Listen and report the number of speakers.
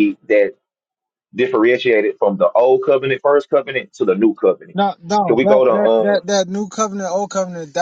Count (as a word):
two